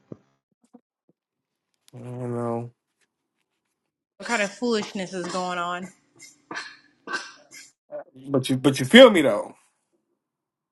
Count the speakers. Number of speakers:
two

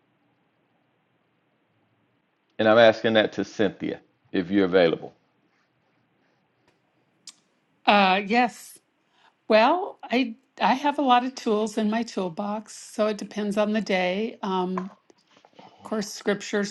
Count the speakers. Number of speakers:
two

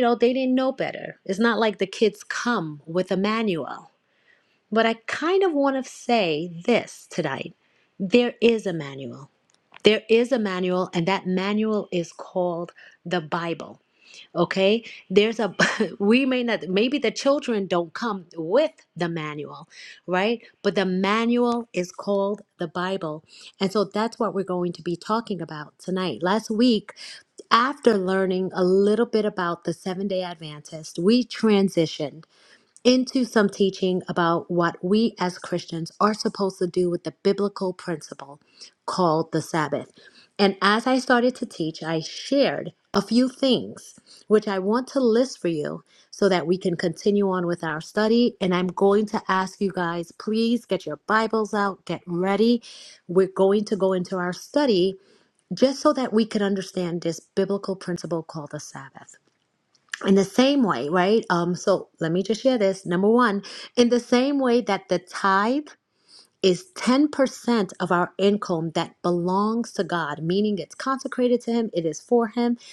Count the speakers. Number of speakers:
one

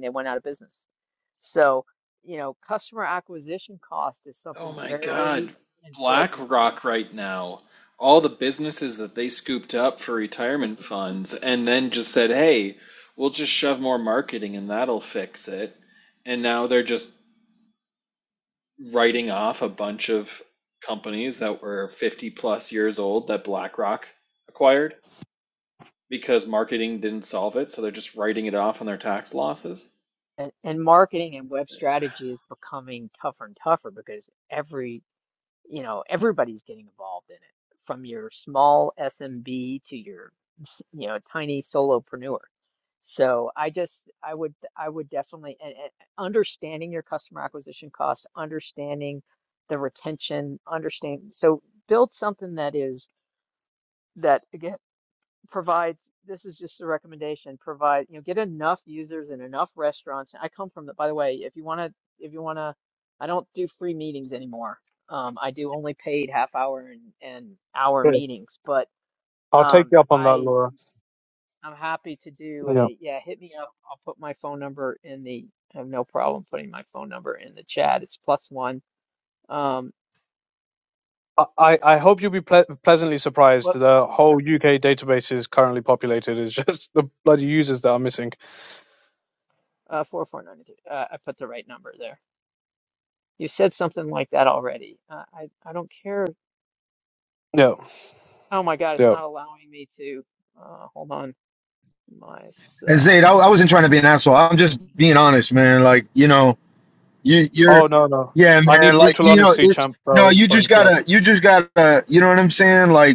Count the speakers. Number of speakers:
four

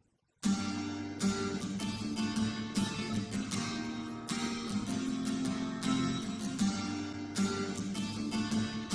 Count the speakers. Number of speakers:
zero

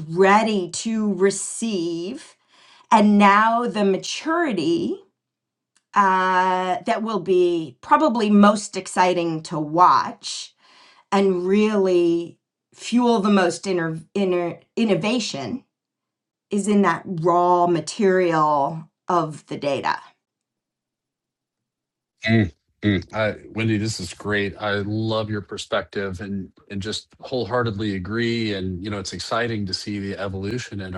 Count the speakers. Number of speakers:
two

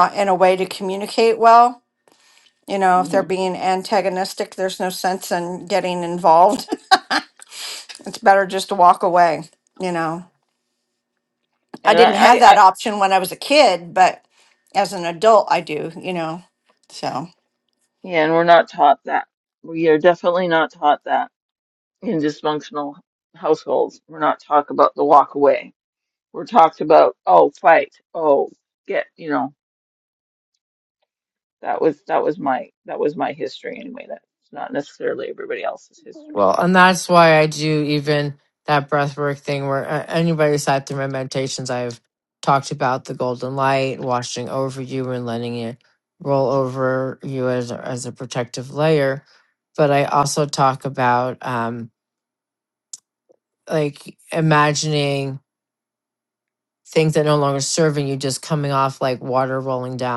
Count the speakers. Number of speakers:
three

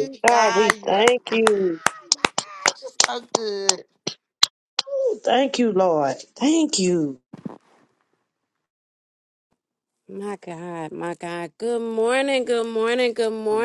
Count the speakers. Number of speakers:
three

